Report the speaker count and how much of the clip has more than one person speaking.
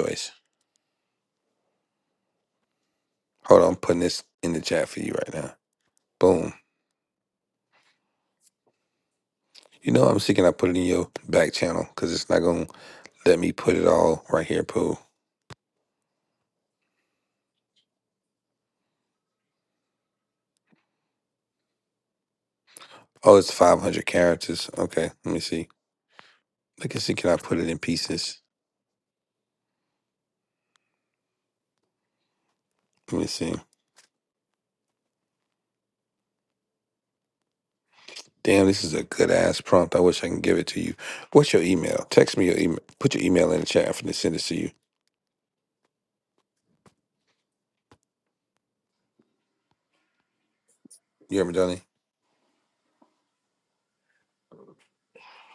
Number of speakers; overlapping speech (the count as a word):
one, no overlap